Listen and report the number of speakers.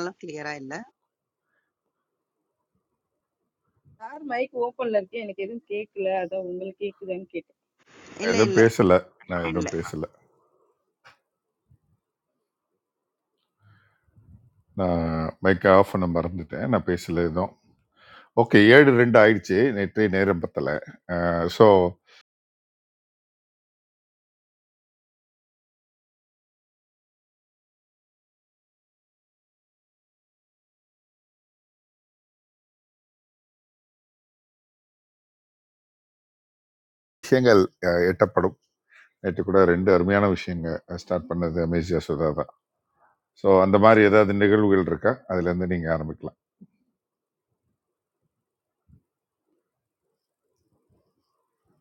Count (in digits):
3